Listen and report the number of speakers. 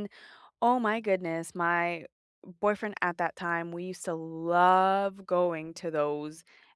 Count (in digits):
1